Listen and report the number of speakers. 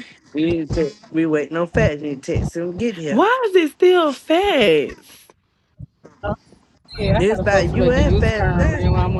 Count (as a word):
three